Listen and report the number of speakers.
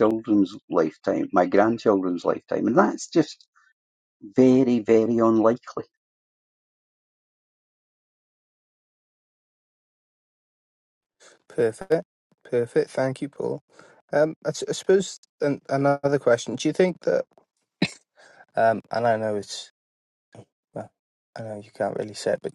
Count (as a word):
two